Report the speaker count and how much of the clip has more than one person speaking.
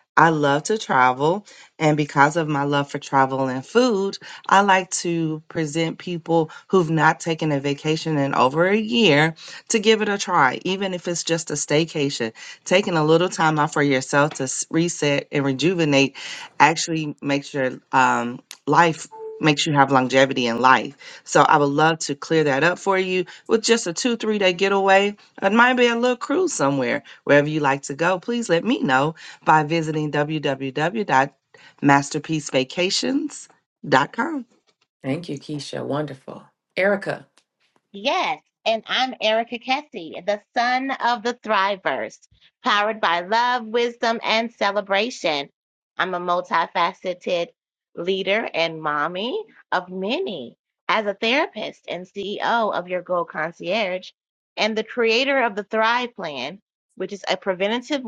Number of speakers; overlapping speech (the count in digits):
3, no overlap